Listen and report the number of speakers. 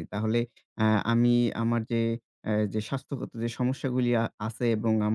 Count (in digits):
1